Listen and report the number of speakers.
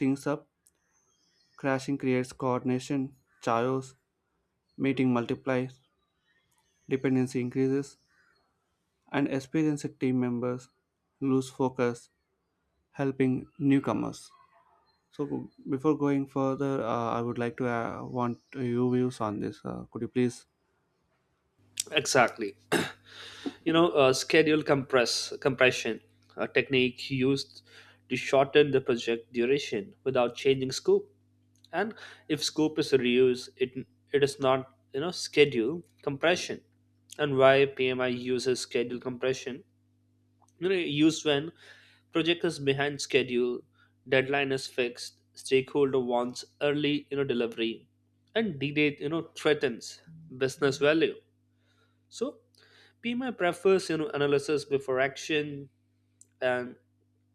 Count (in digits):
2